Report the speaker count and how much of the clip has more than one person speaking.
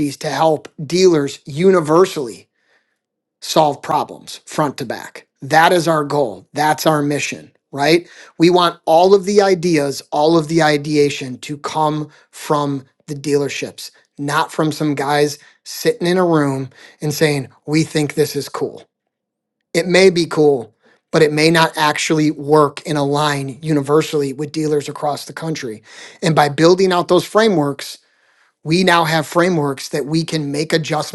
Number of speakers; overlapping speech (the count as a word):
one, no overlap